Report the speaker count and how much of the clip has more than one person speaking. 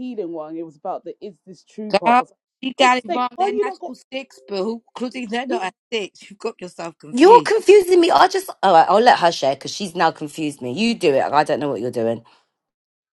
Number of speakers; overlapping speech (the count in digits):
3, about 15%